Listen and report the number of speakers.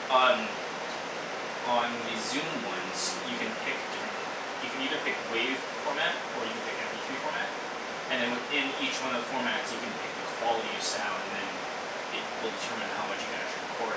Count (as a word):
one